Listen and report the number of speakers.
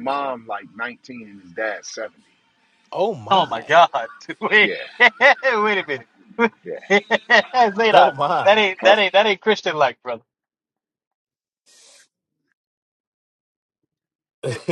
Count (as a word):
three